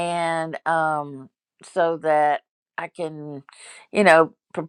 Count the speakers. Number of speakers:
1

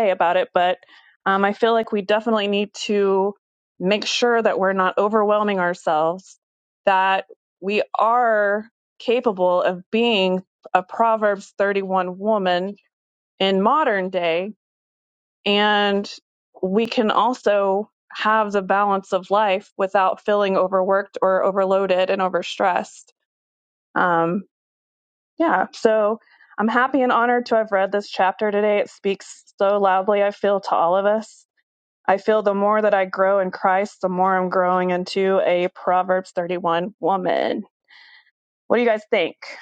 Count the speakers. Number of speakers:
1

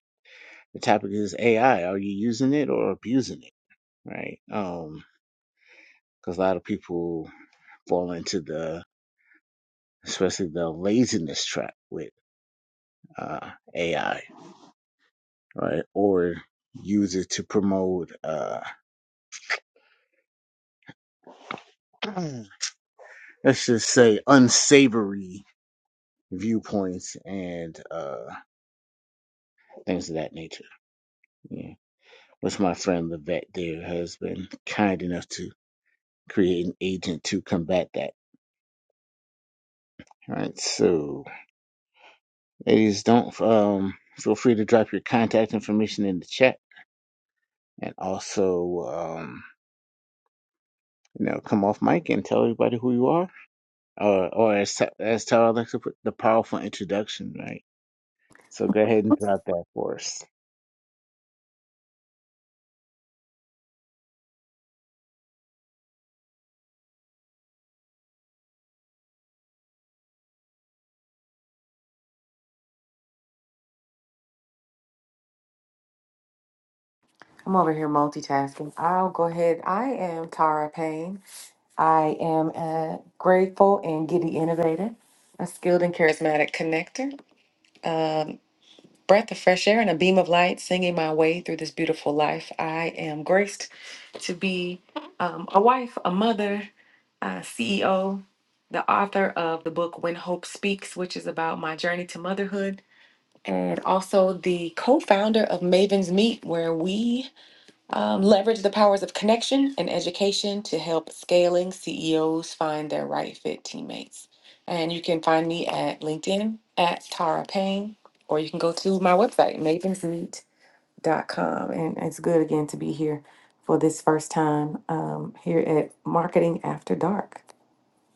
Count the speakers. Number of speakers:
2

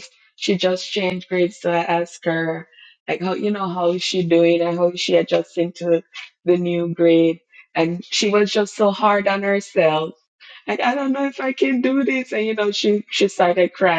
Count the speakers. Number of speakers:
1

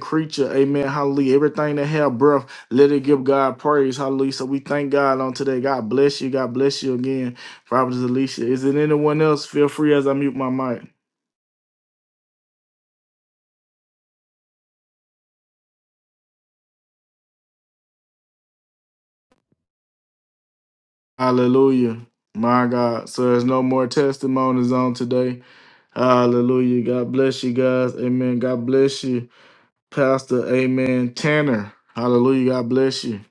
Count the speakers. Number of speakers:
1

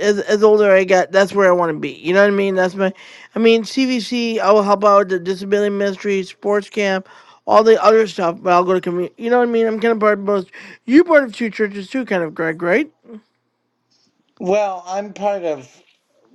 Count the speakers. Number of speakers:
2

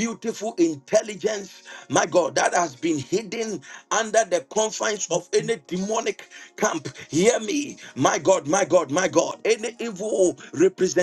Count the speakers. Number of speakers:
1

